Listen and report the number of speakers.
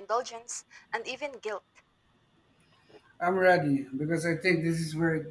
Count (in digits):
2